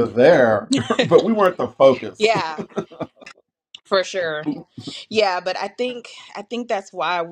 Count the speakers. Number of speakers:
2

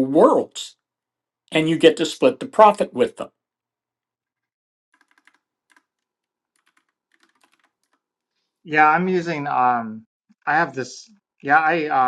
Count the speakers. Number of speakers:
2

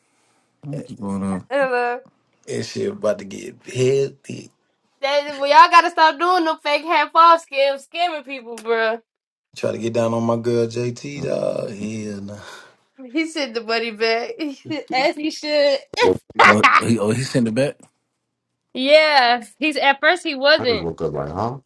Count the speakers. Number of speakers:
4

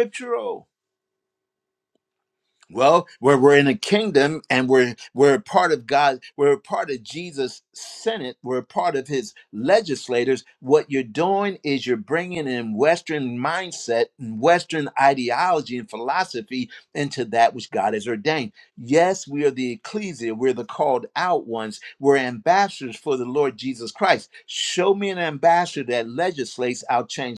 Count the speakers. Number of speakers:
1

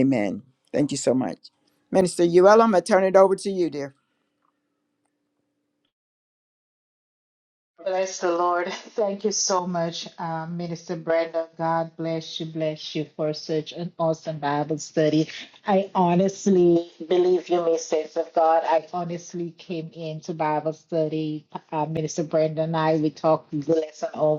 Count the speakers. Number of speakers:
2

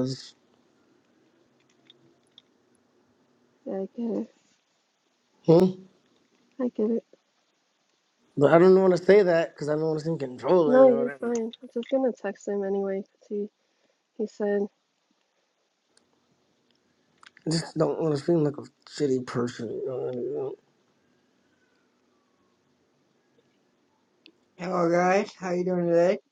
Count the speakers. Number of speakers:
3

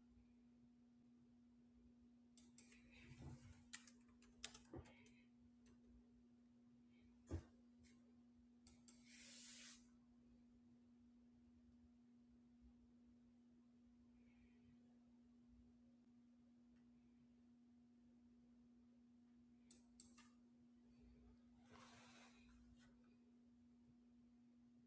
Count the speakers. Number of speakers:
0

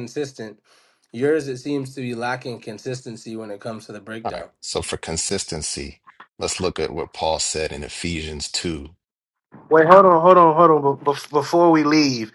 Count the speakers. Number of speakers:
3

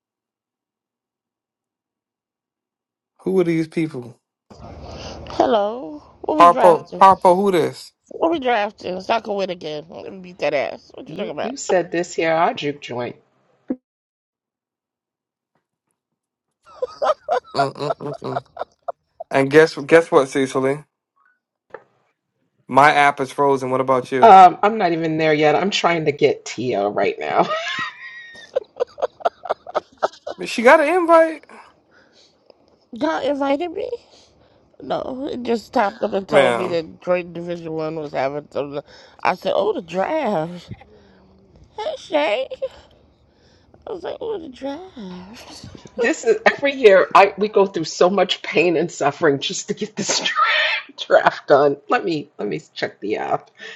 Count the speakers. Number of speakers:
3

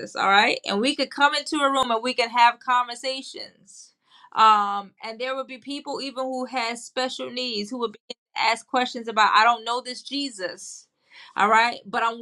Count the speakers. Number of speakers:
1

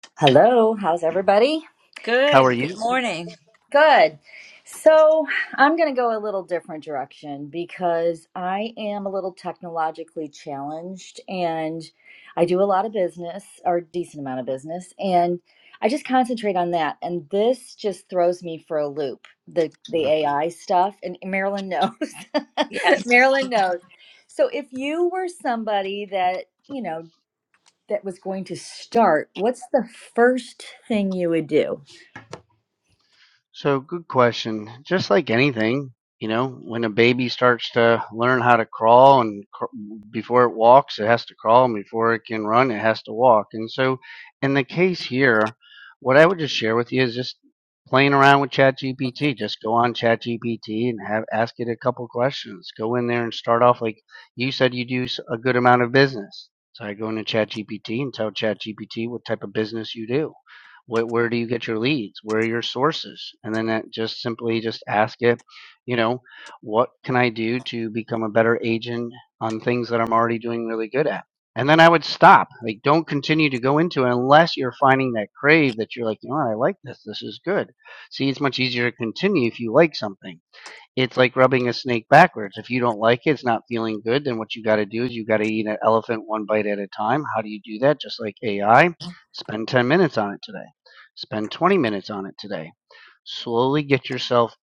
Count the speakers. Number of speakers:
3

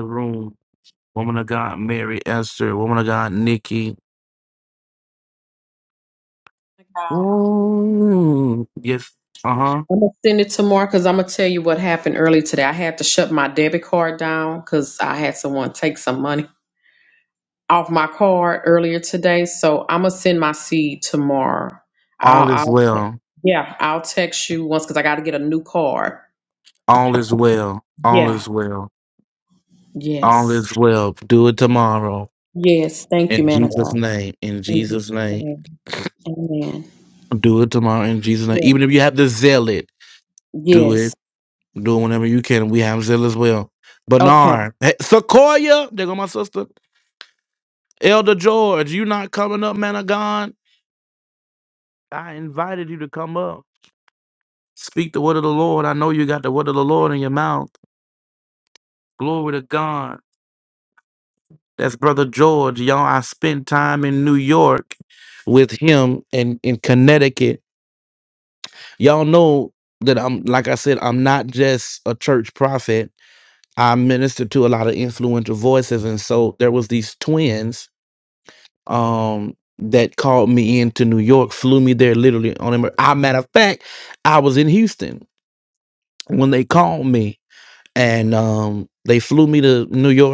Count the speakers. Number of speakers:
2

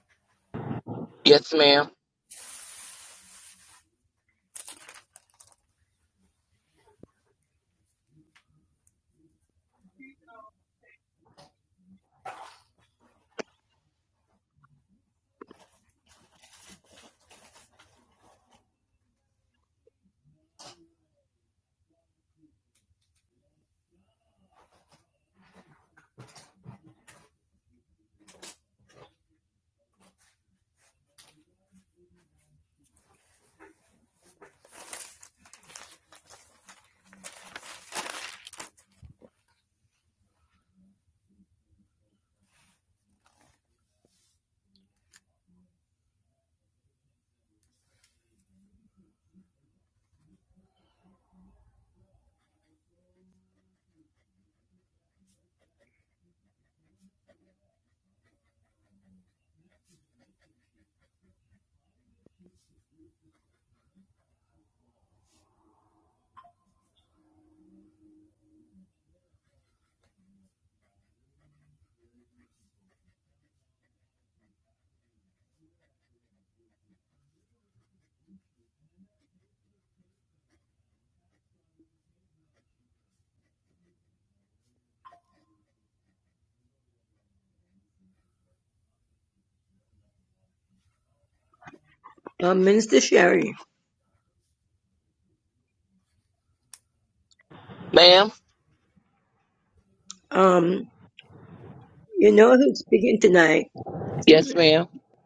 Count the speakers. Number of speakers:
2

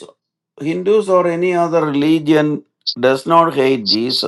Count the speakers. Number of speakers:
1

